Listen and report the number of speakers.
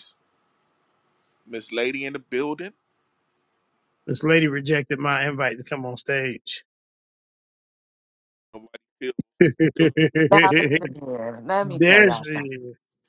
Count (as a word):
three